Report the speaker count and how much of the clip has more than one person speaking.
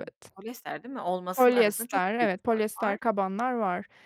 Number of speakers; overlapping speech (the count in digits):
2, about 40%